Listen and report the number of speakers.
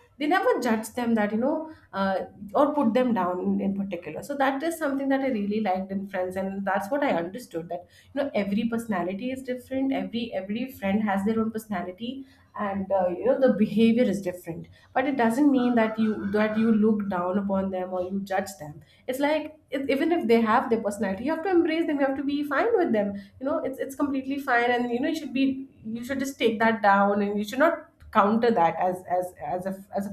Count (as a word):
one